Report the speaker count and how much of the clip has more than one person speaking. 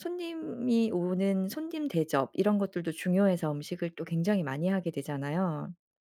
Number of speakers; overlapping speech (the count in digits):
1, no overlap